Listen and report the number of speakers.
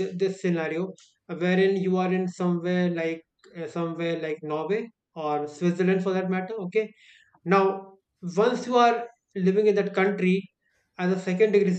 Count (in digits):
1